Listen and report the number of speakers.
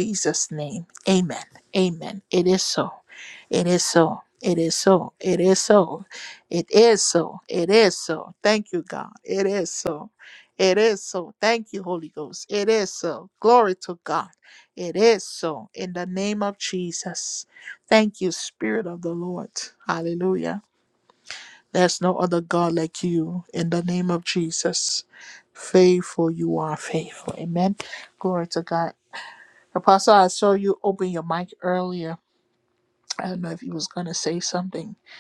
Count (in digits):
1